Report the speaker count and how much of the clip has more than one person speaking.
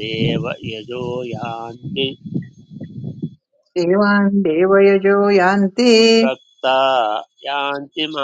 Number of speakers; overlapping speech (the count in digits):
2, no overlap